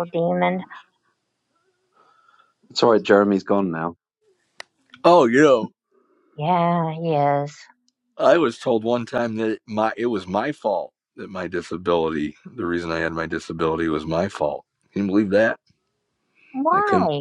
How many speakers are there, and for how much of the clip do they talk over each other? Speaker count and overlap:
3, about 2%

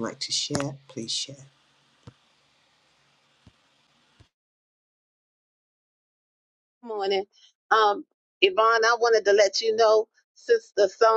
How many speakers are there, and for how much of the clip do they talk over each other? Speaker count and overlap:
2, no overlap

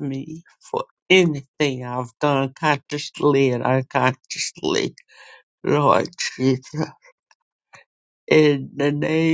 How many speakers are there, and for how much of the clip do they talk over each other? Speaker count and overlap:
1, no overlap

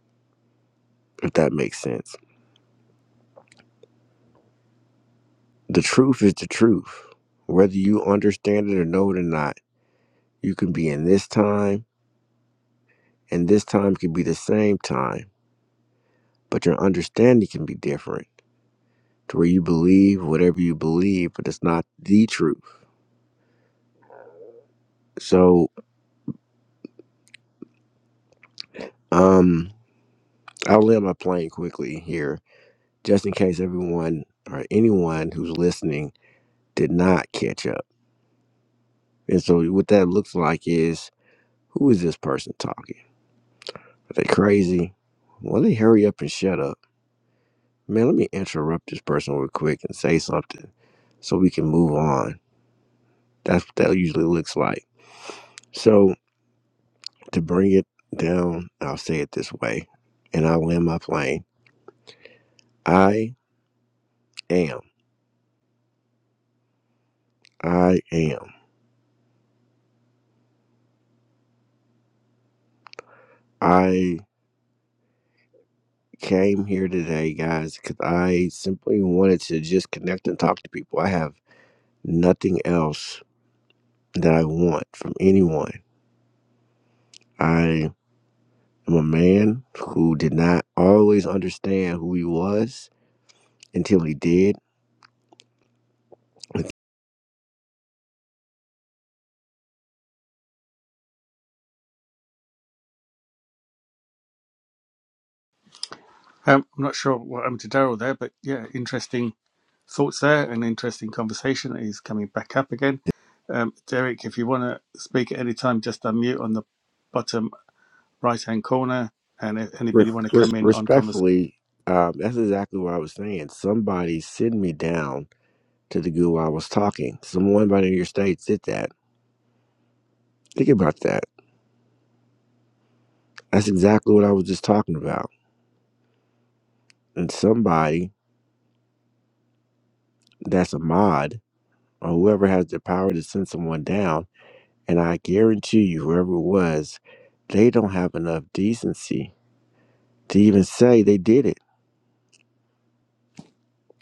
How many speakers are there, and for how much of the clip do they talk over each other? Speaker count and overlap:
2, about 1%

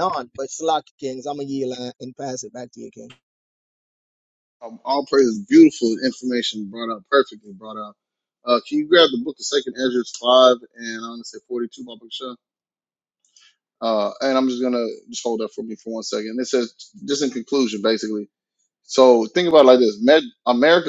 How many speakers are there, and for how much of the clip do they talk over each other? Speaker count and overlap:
2, no overlap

